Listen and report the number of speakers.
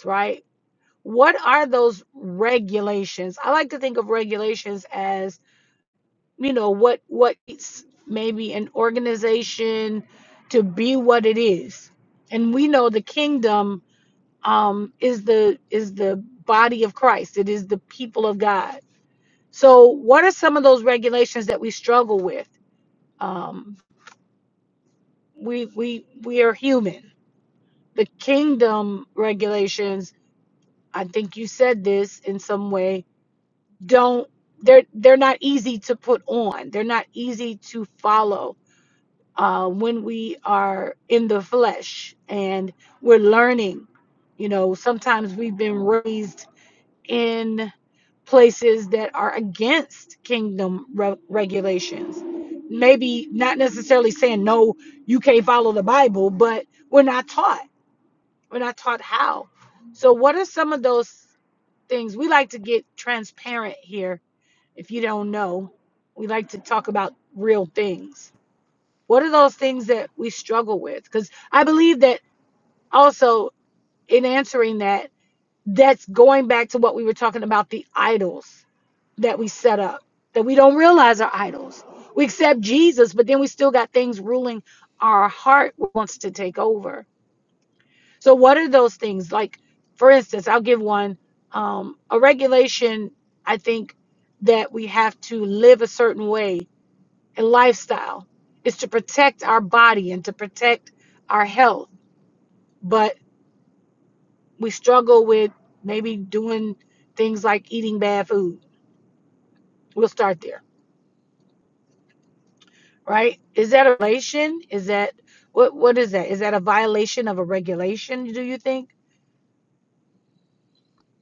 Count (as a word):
one